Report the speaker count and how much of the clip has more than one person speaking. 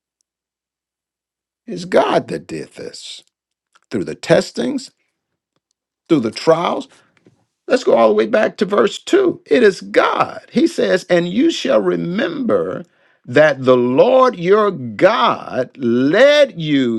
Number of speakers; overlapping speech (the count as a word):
one, no overlap